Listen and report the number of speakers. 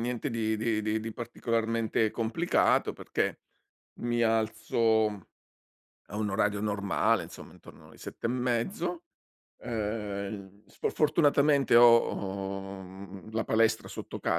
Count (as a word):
one